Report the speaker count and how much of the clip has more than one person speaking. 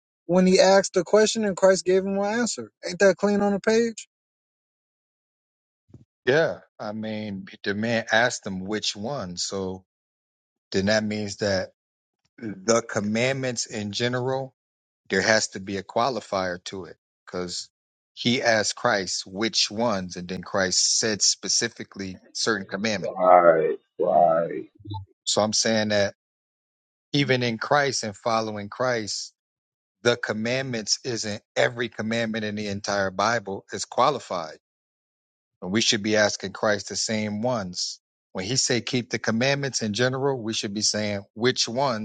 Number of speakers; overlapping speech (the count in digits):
3, under 1%